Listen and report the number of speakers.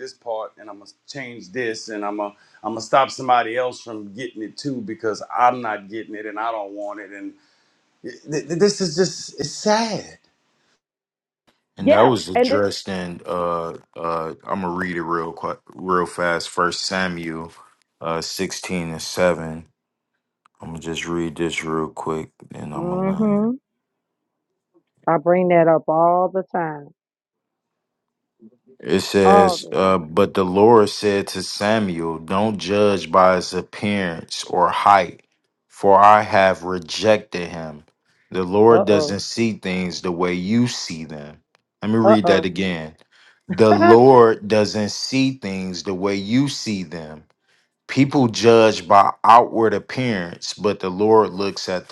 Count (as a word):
three